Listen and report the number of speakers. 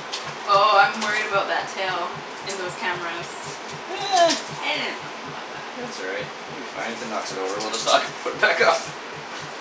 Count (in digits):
2